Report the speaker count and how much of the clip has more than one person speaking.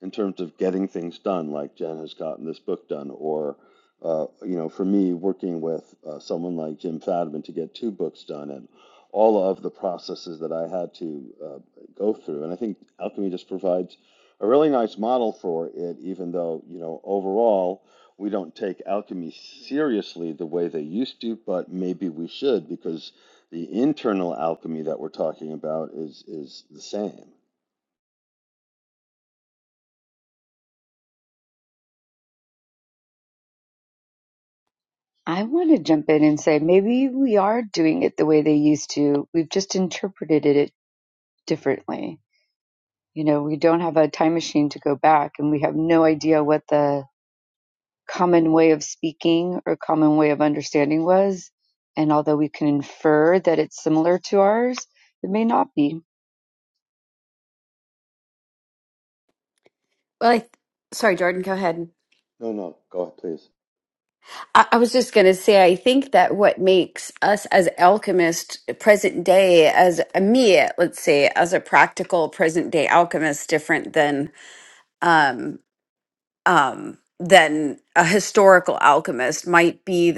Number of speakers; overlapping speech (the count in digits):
3, no overlap